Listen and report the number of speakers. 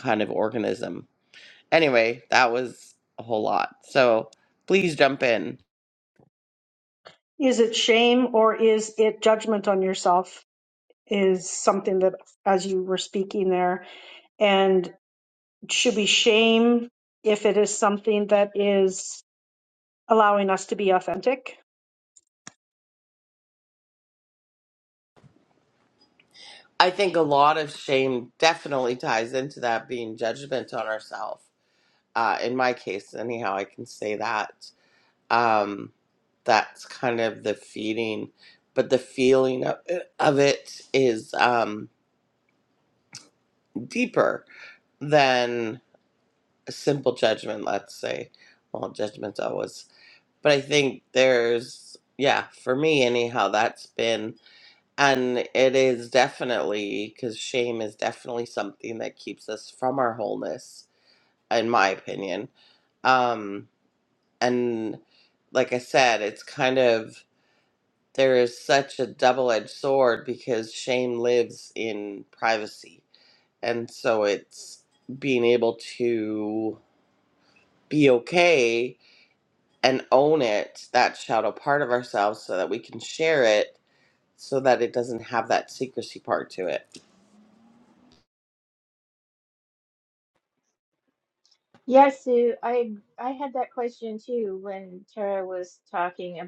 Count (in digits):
3